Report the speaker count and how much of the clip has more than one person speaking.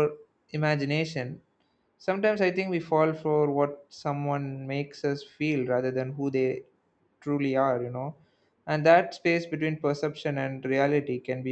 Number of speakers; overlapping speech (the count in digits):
1, no overlap